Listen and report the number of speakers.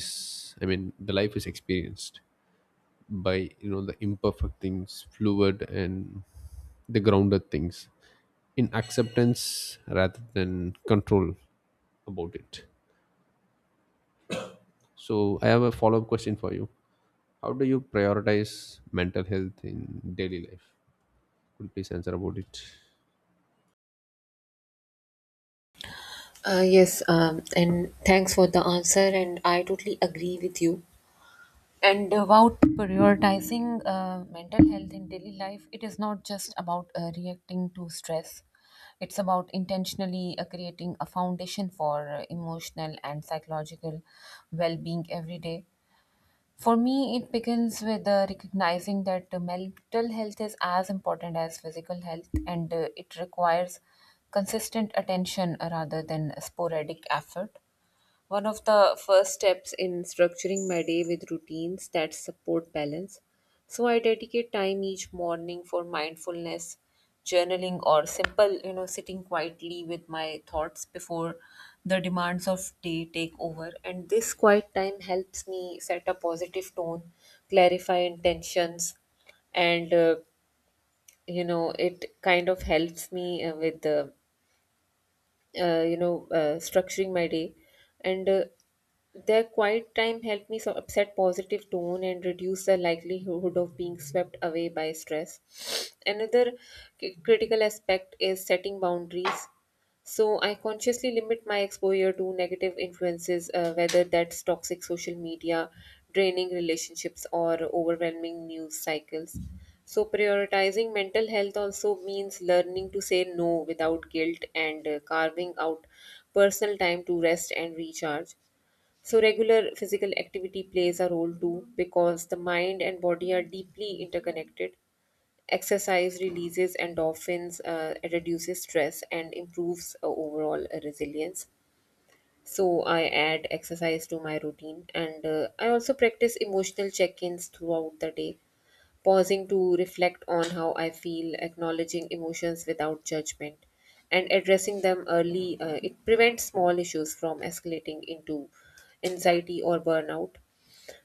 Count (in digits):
2